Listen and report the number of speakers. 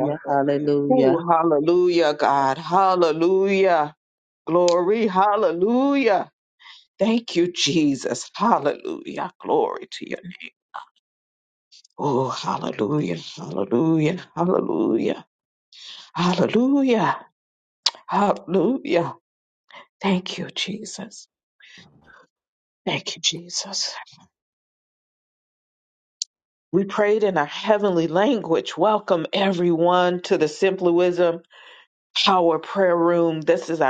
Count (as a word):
two